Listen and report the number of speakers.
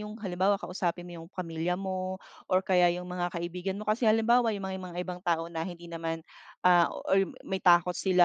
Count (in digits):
1